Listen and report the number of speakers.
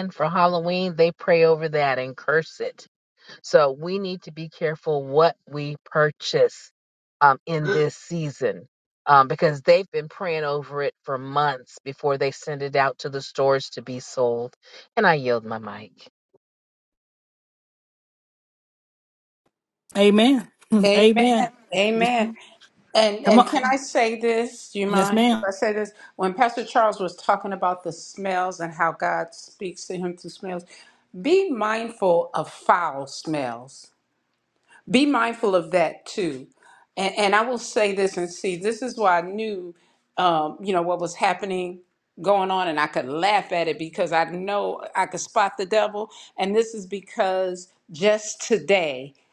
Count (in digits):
3